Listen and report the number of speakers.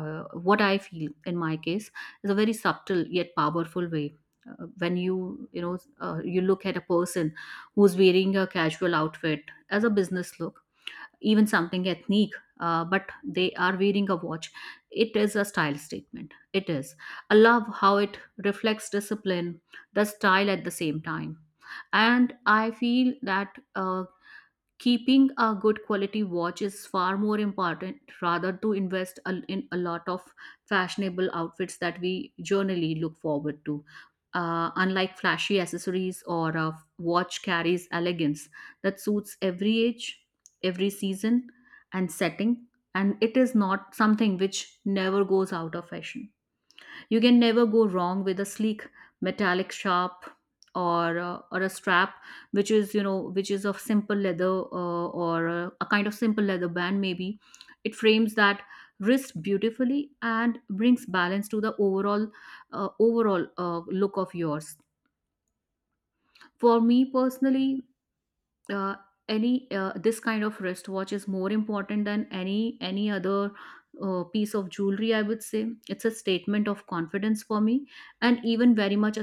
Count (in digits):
1